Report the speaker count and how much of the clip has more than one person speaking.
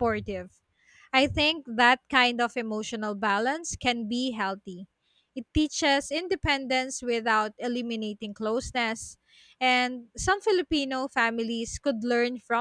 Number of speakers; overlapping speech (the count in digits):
1, no overlap